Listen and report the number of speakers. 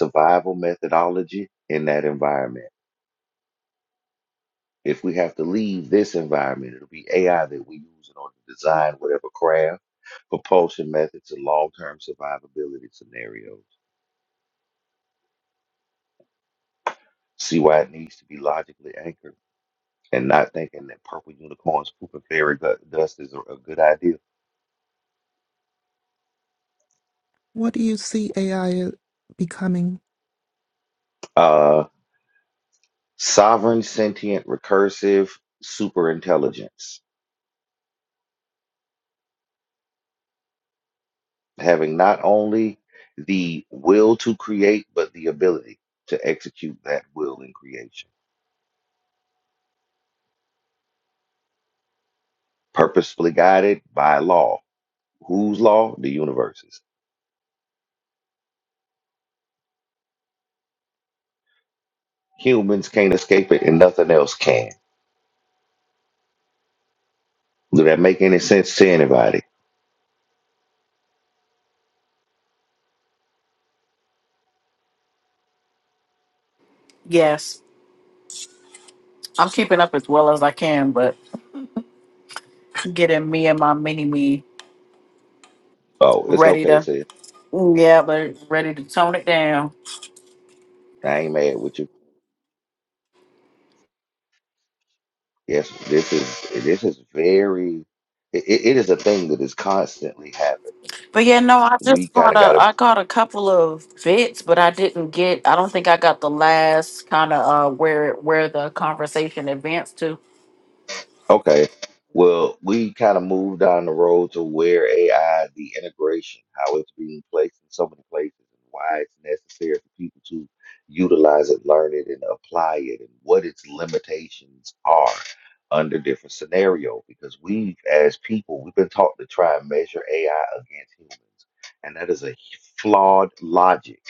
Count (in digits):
3